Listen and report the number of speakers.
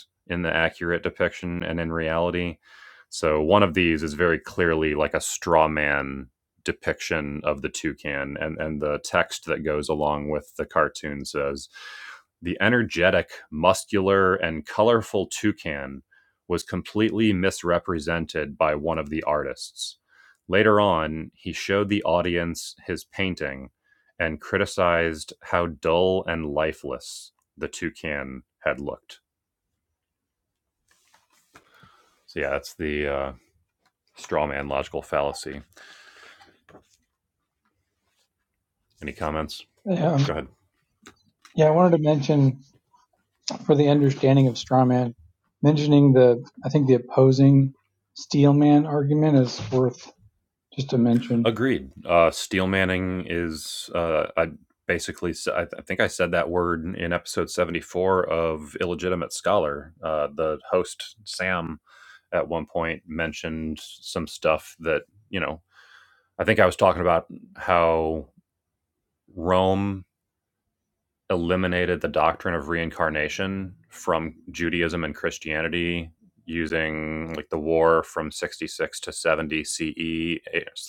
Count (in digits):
2